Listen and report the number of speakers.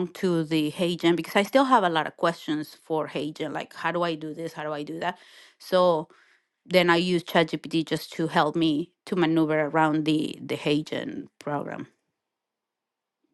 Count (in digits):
1